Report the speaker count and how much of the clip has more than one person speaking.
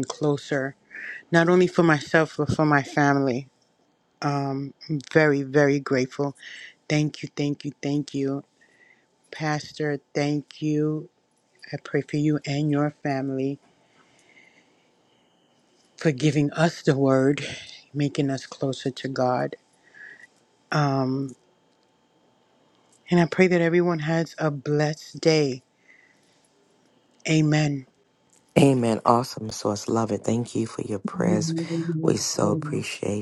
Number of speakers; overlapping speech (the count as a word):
three, about 3%